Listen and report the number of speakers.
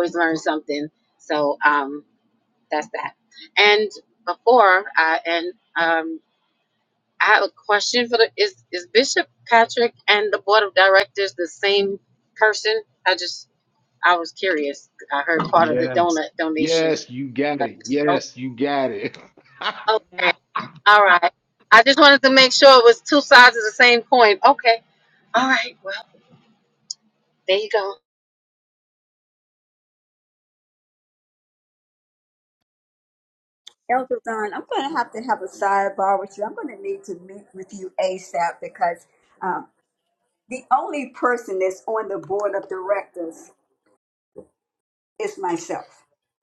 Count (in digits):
3